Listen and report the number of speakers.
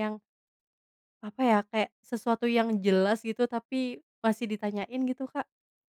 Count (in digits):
1